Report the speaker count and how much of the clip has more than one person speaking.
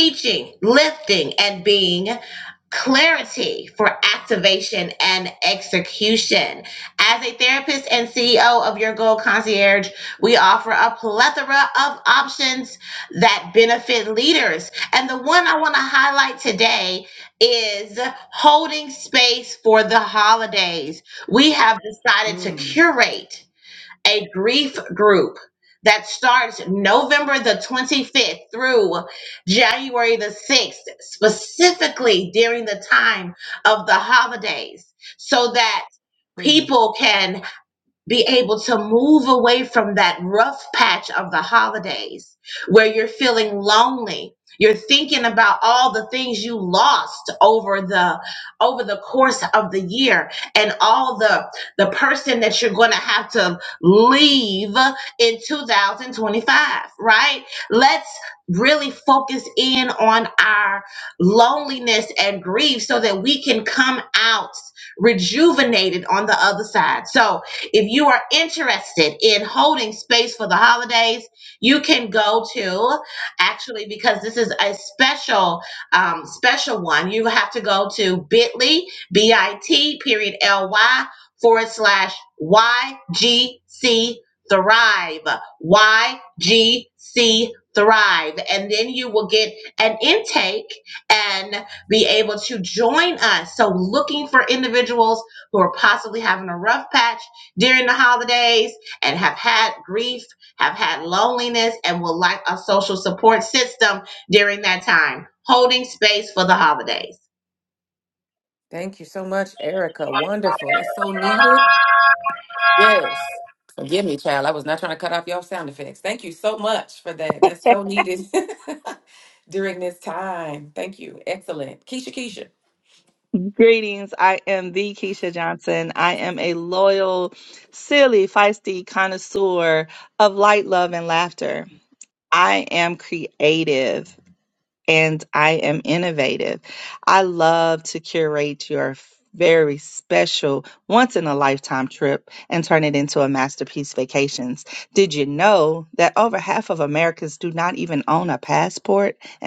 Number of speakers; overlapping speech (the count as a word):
three, about 1%